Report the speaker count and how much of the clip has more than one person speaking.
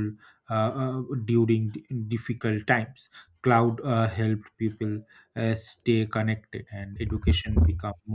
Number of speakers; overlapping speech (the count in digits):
1, no overlap